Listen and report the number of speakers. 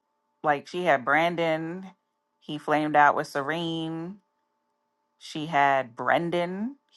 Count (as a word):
one